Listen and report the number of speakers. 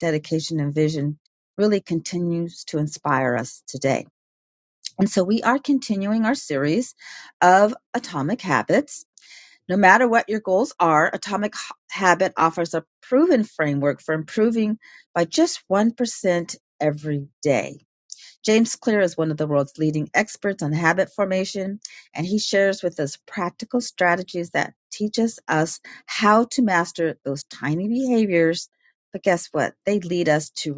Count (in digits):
1